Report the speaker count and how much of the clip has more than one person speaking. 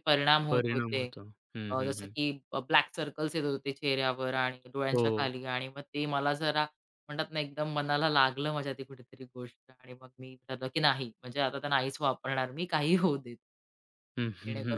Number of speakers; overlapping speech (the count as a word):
two, about 11%